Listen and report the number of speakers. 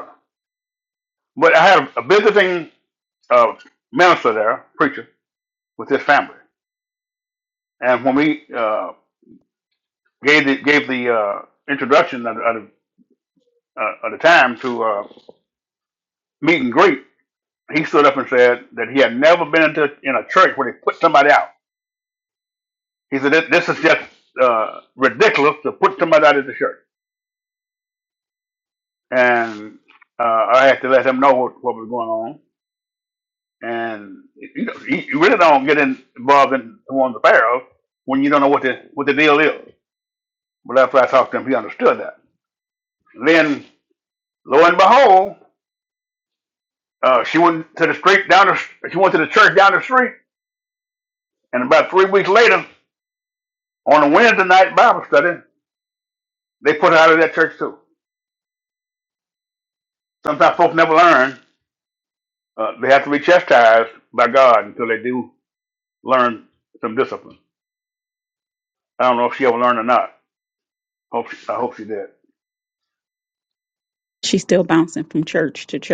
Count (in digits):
2